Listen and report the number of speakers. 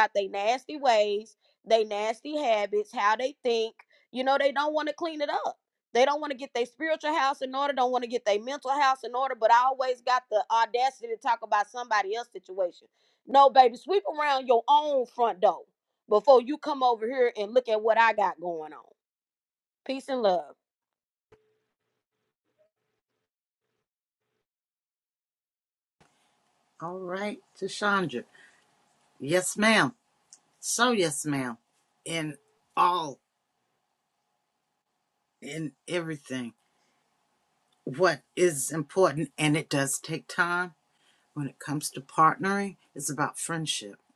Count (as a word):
two